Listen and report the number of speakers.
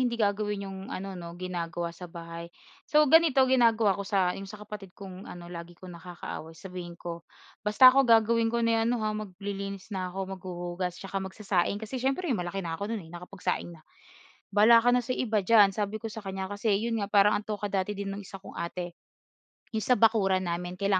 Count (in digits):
1